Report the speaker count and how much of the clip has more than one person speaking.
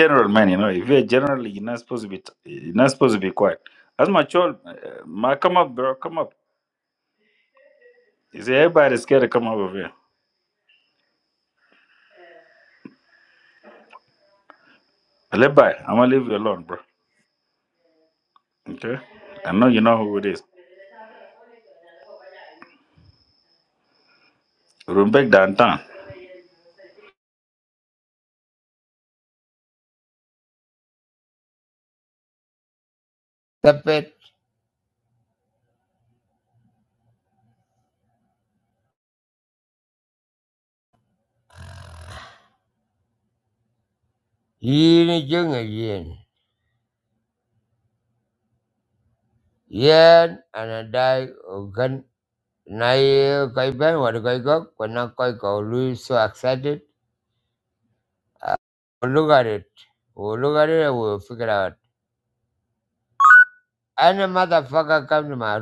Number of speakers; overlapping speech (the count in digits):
2, no overlap